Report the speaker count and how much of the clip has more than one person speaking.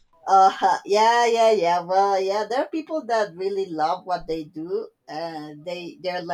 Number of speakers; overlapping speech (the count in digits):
1, no overlap